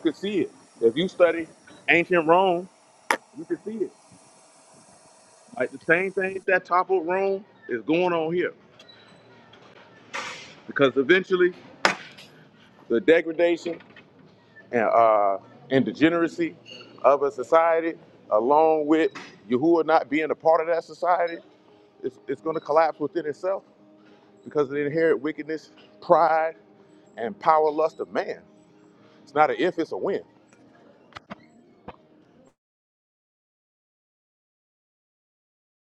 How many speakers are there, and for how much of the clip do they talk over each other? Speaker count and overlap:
one, no overlap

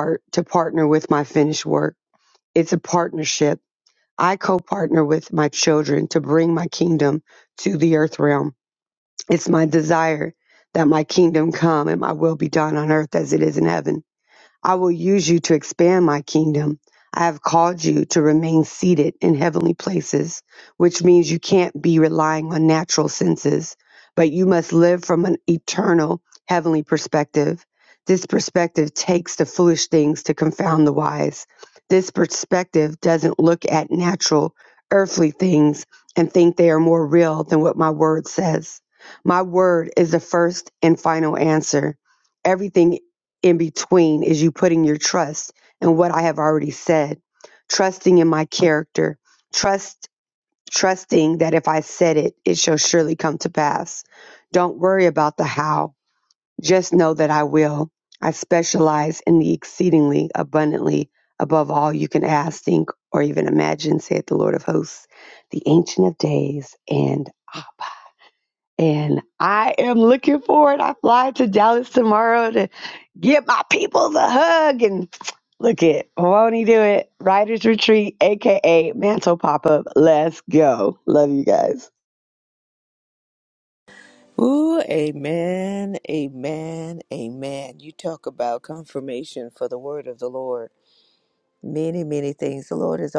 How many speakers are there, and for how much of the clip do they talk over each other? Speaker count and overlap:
two, no overlap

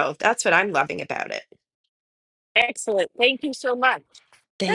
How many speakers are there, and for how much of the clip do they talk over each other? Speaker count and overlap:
two, about 2%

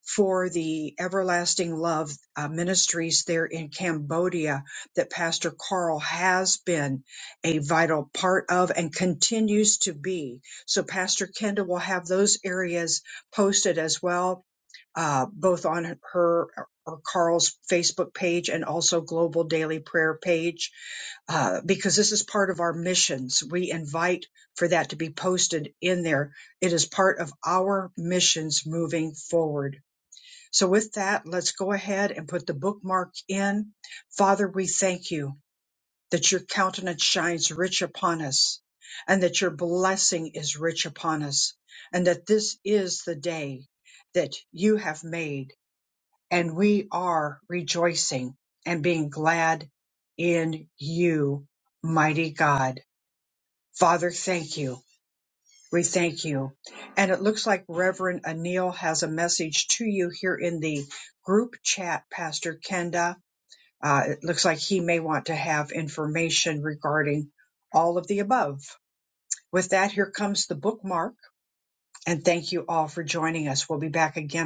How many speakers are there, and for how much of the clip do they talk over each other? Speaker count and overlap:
one, no overlap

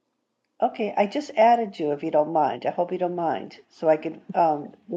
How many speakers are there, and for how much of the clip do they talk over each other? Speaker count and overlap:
one, no overlap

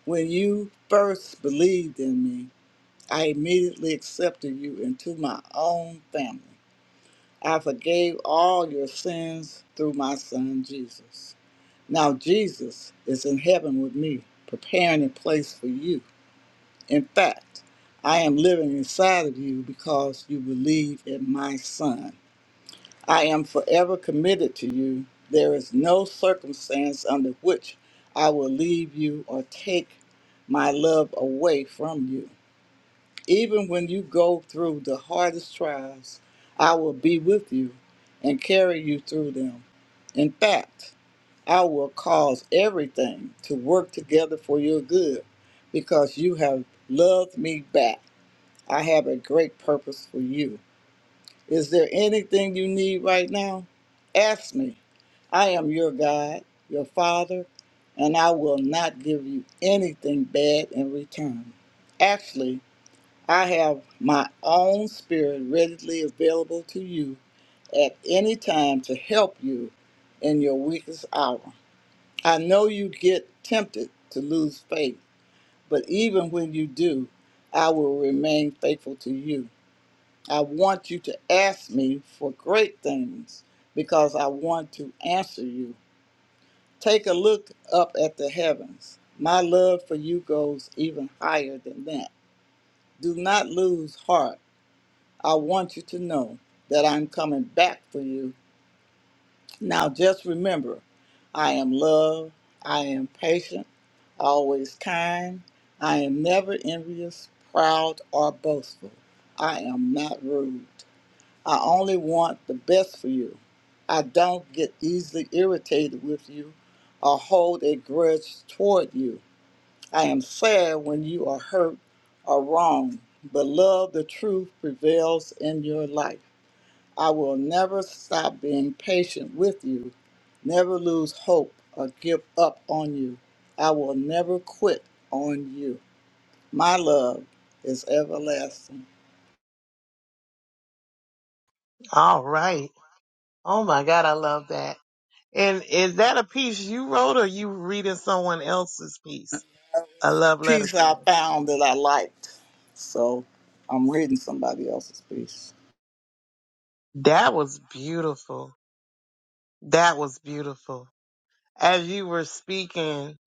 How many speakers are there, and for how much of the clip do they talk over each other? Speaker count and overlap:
two, under 1%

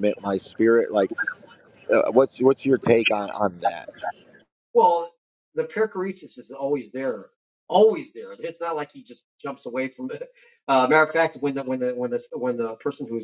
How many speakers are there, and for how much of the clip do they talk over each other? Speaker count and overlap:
two, no overlap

